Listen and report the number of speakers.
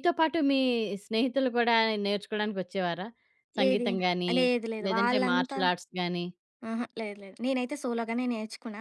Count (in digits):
2